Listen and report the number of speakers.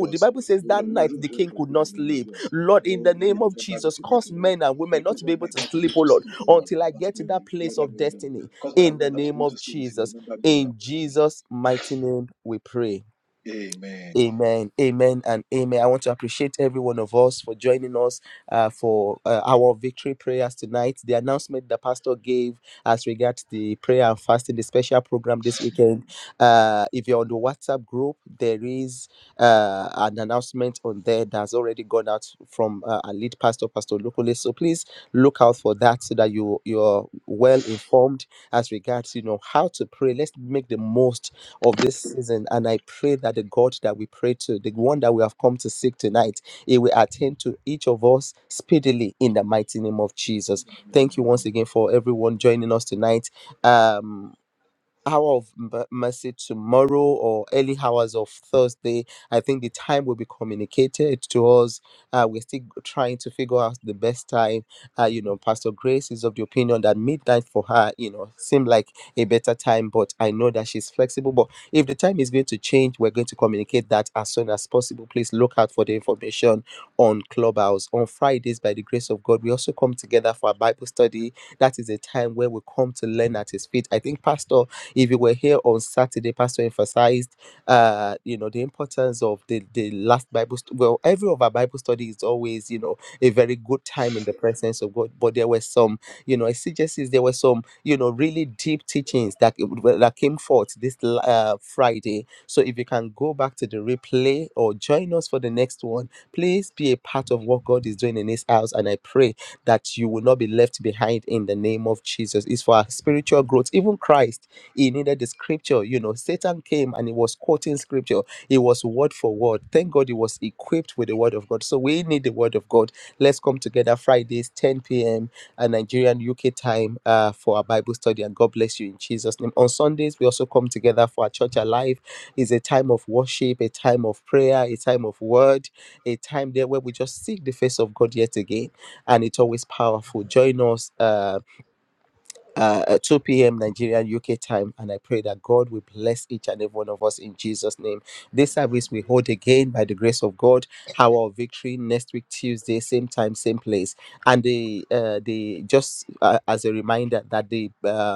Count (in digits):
2